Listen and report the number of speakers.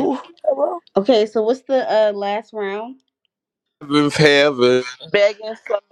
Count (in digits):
3